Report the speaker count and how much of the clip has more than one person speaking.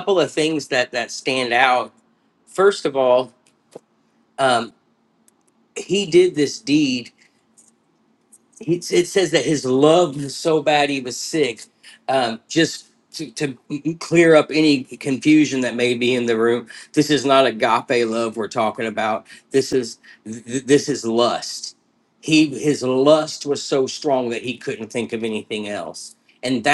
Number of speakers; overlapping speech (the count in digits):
1, no overlap